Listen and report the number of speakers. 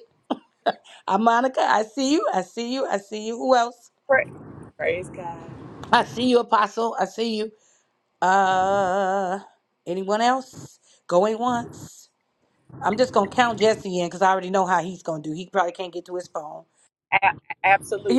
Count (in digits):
2